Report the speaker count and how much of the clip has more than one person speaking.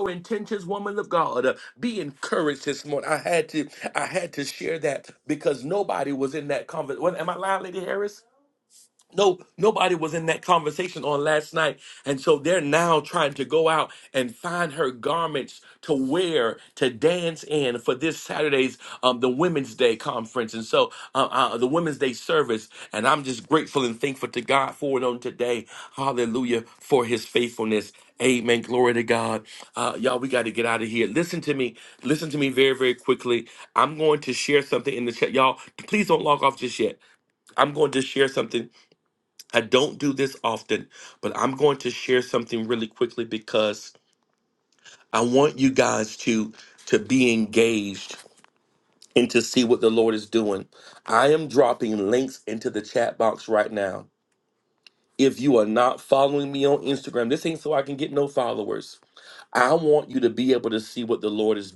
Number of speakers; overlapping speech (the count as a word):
one, no overlap